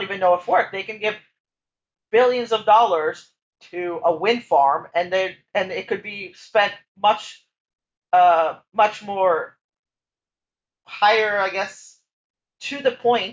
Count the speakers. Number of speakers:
one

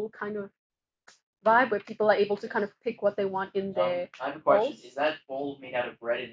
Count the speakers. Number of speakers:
two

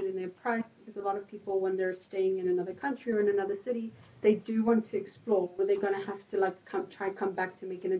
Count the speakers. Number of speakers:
one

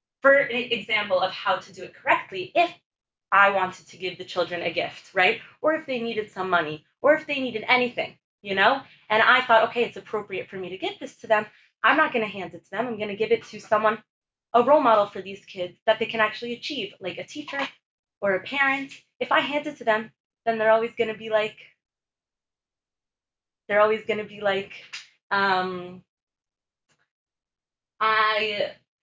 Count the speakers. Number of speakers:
one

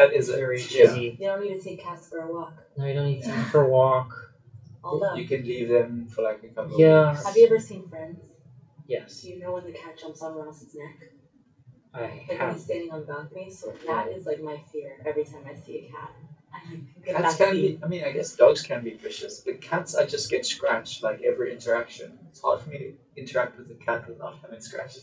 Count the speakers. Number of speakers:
three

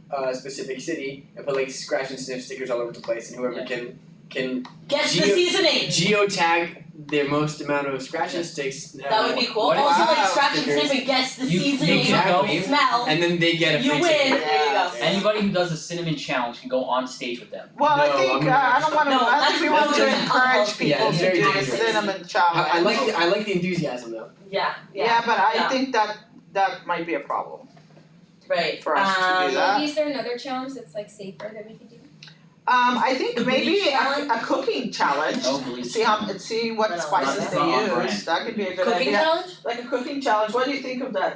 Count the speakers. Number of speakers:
five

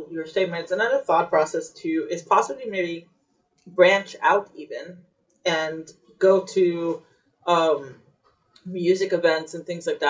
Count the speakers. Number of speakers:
one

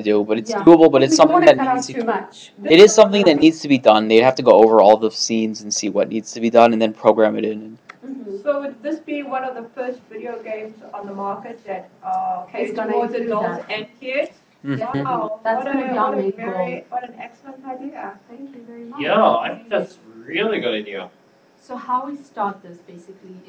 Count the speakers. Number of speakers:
four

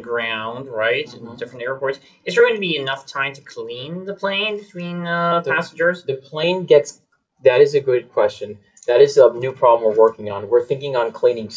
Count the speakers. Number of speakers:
two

